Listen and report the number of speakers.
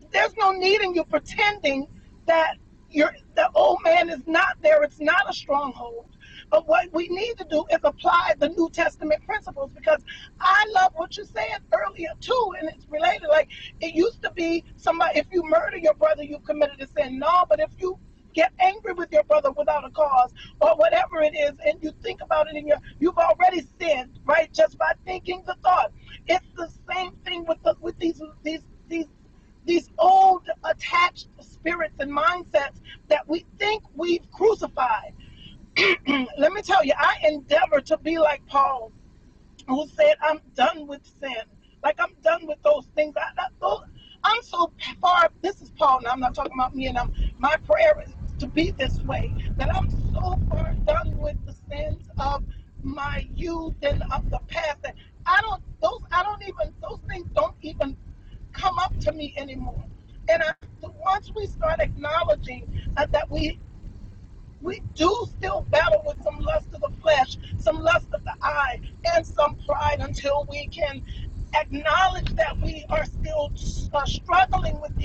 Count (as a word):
one